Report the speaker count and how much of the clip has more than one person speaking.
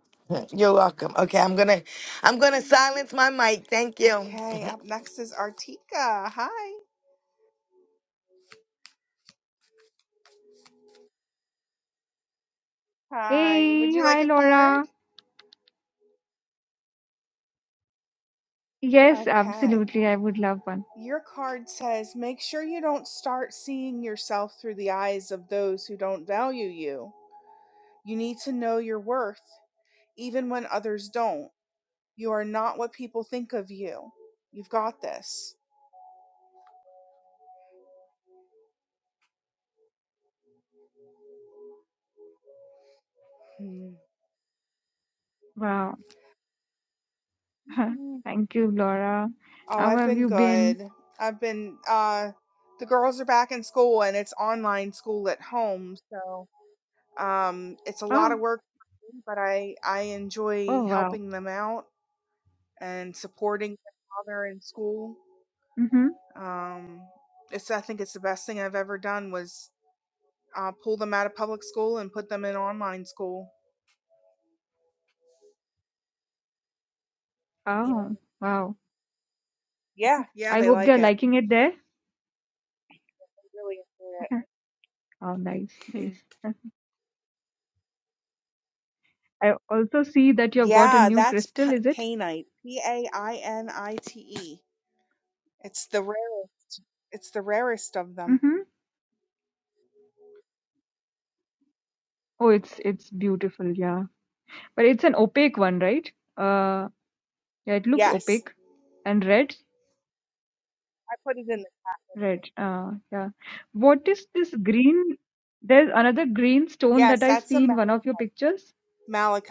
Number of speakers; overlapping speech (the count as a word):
three, about 7%